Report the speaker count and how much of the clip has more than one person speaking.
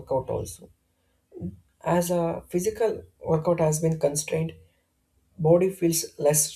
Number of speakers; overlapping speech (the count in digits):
1, no overlap